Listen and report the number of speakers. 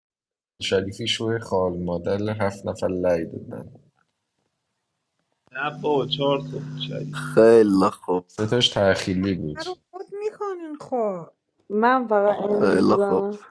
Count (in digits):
5